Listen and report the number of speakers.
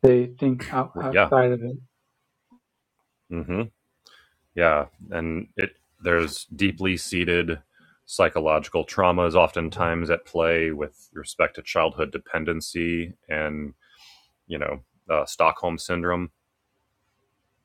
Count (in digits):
2